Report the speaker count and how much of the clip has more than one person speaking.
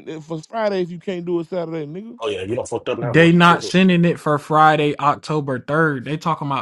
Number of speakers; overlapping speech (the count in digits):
3, about 5%